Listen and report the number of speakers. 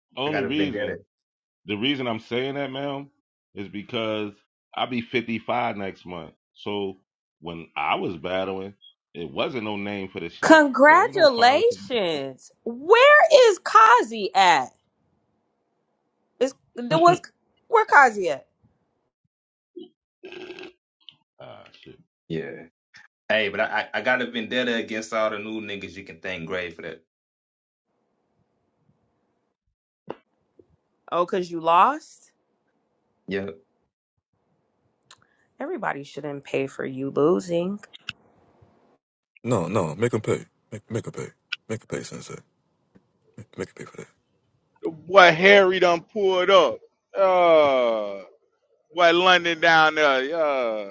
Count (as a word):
five